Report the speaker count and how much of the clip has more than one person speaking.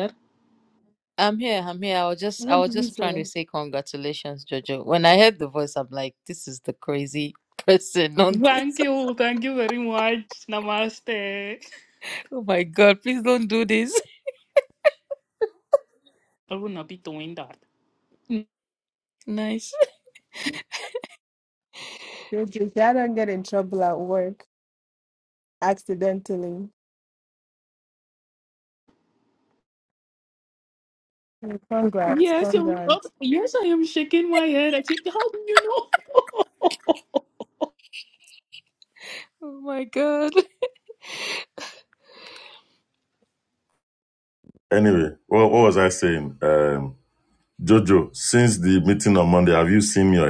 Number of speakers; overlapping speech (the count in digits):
4, about 4%